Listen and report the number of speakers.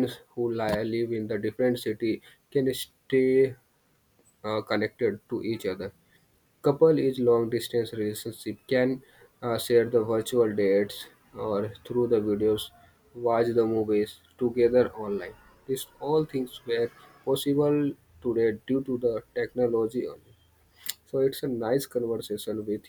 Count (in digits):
1